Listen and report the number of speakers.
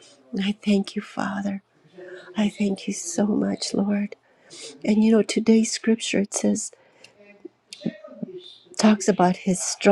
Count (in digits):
1